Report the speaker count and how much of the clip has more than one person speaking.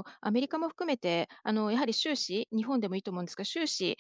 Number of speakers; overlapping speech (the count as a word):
one, no overlap